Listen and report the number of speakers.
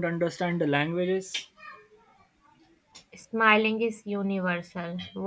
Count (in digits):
2